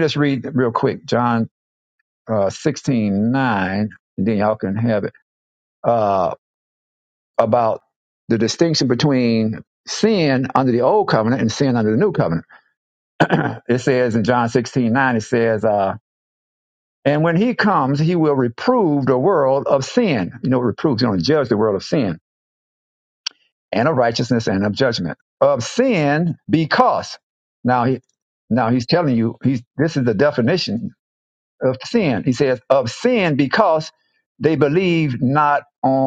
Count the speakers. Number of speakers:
one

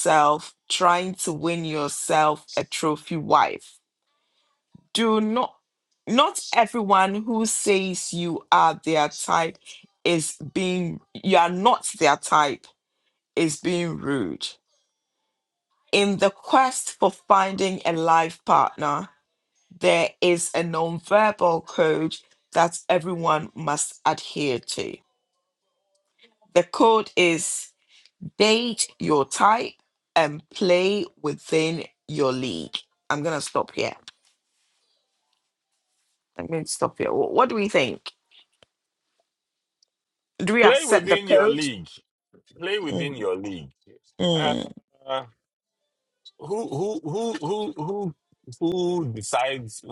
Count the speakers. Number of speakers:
two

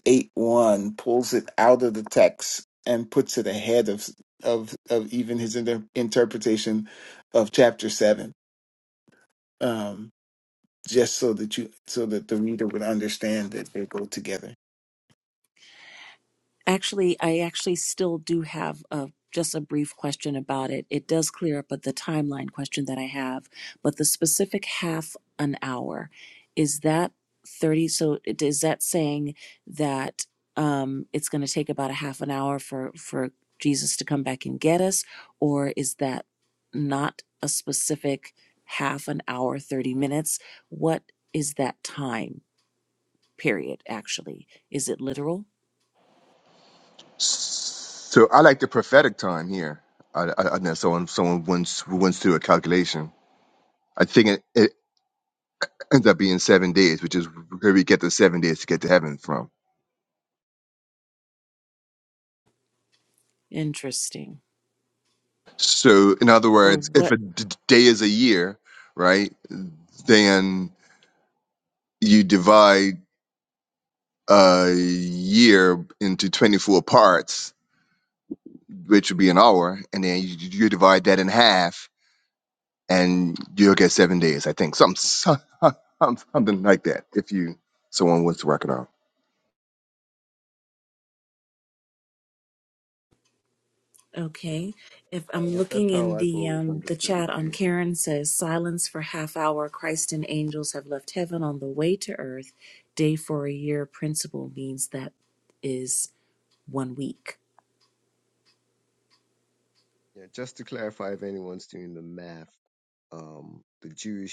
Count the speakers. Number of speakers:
four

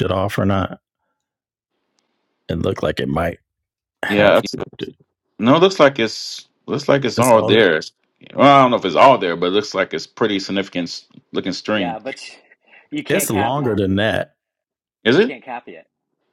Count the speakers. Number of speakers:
three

